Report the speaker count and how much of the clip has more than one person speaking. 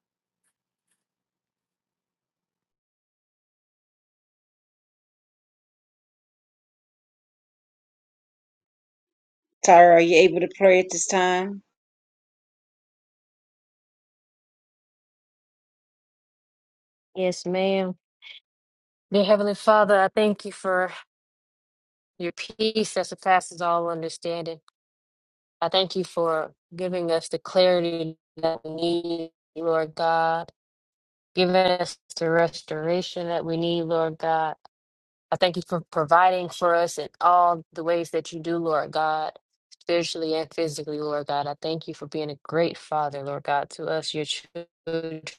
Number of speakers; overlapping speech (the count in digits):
2, no overlap